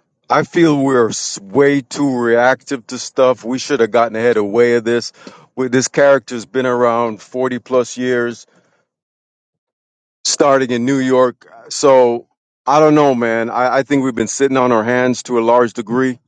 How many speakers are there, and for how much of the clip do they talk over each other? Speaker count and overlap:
1, no overlap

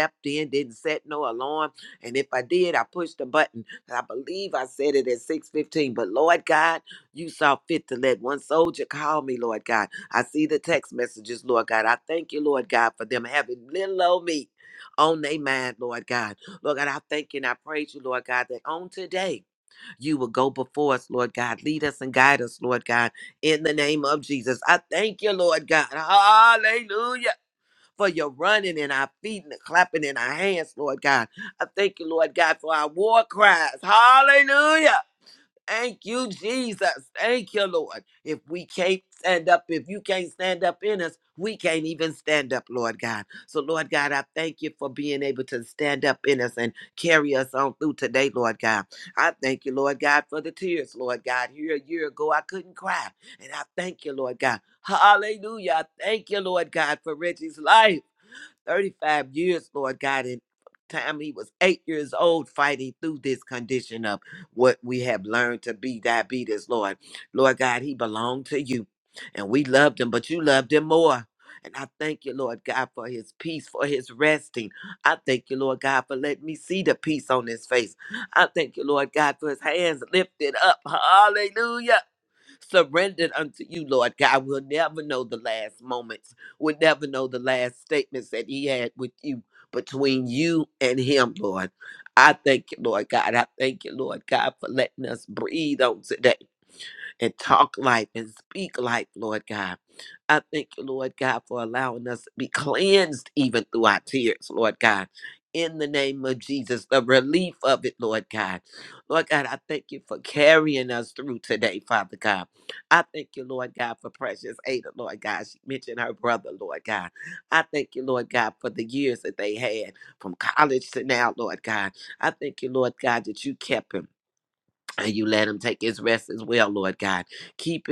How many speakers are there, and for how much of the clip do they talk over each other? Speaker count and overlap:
1, no overlap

